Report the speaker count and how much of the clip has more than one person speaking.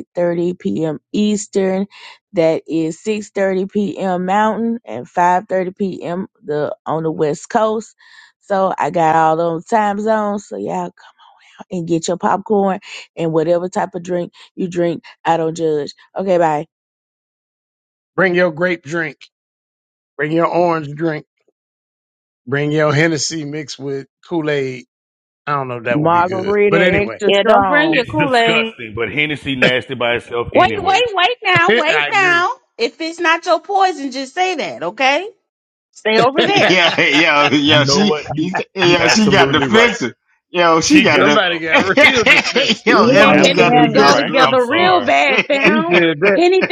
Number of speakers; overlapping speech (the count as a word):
five, about 21%